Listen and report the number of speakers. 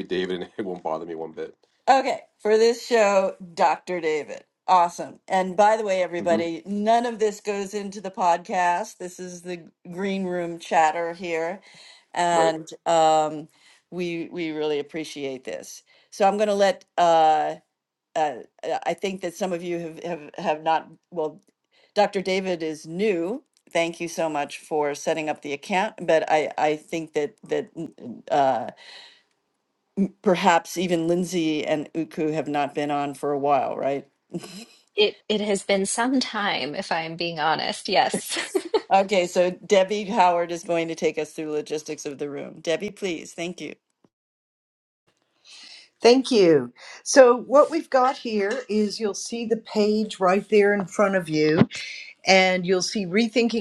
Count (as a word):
four